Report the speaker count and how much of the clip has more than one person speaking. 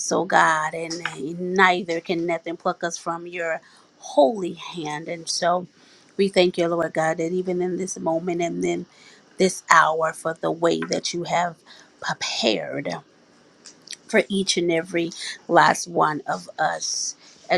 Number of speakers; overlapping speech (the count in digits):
1, no overlap